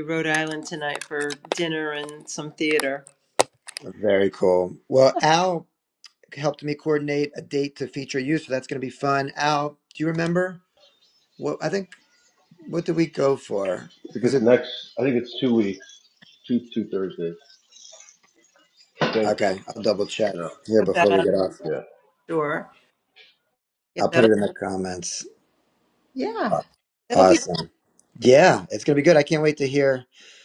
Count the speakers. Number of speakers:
three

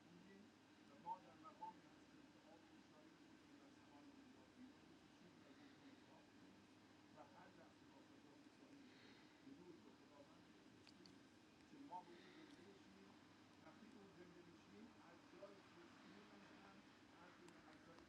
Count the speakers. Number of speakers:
zero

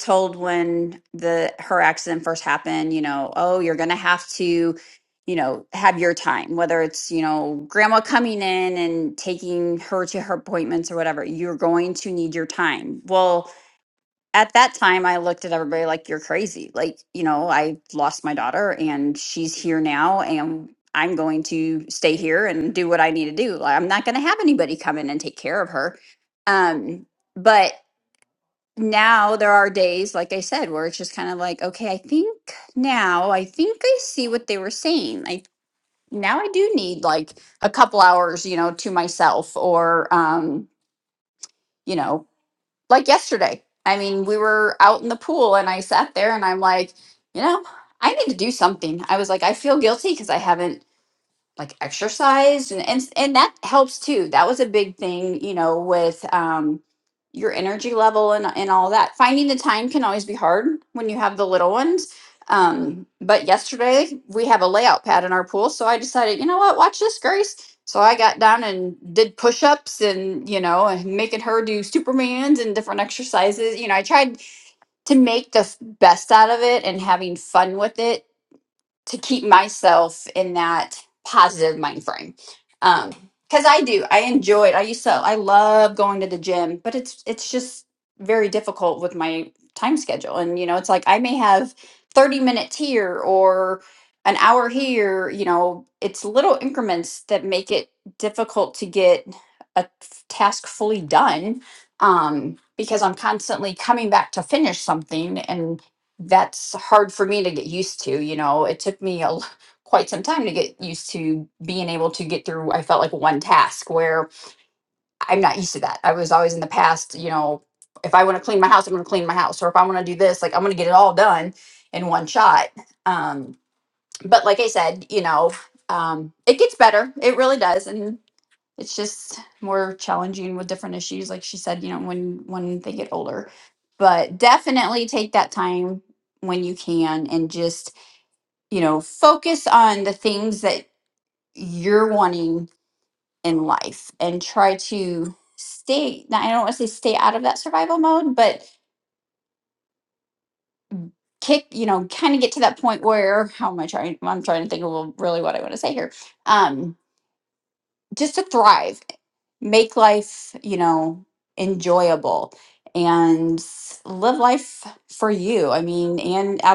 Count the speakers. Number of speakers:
one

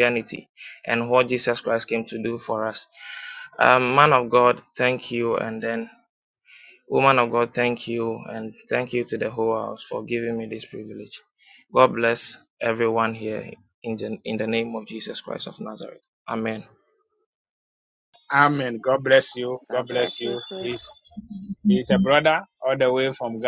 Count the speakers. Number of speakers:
two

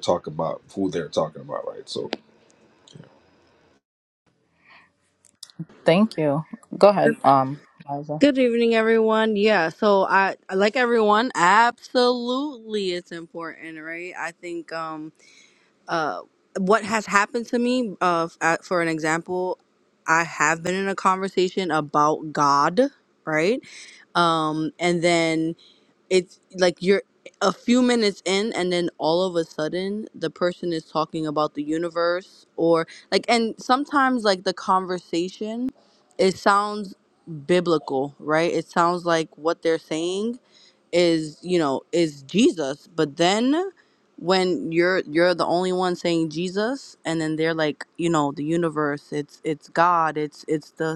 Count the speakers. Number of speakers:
three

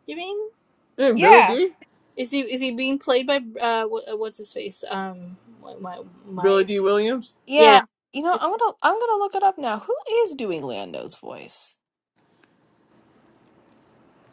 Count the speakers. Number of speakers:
three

